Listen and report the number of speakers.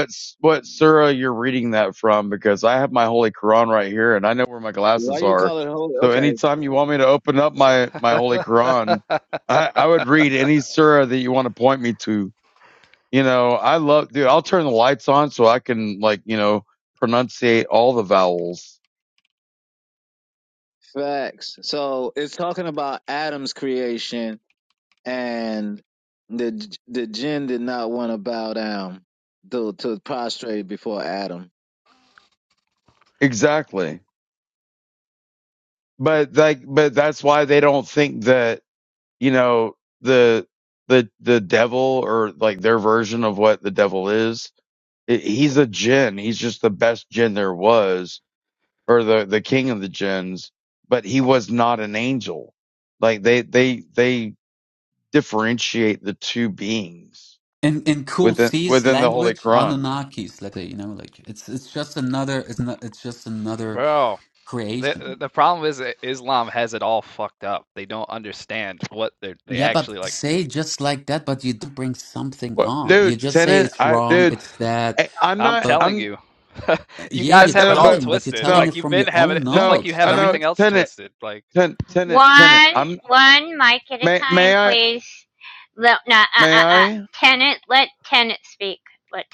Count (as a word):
five